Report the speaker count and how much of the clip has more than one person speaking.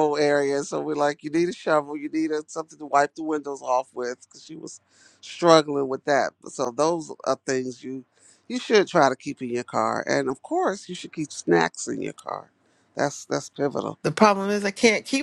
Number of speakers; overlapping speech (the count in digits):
2, no overlap